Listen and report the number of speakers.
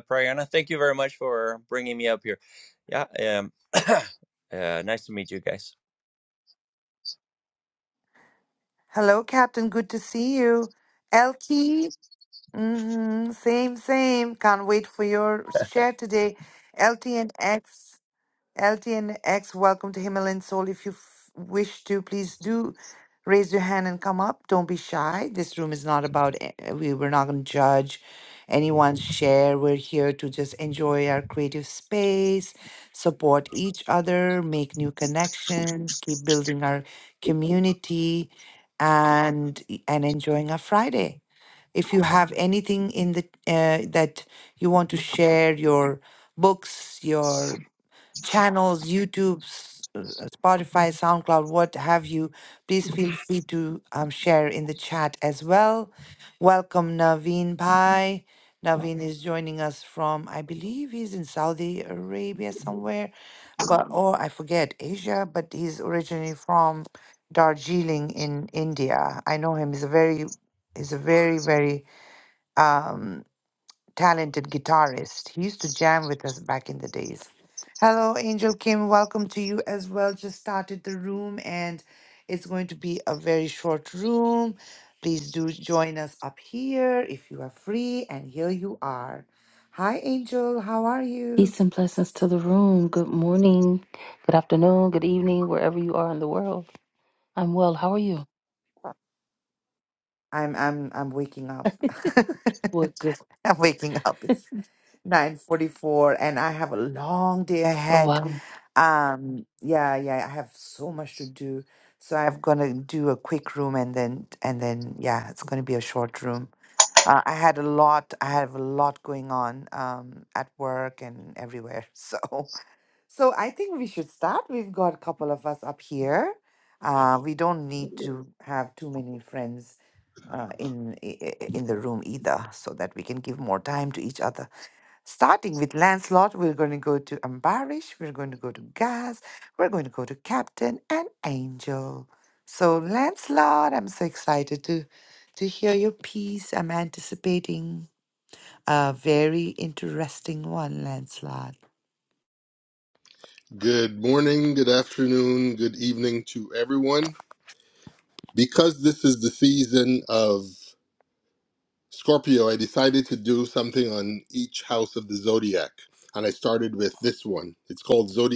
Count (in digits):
4